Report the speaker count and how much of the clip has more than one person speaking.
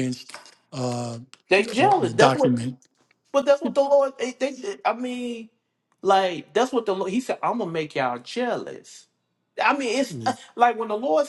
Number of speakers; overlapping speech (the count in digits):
2, about 8%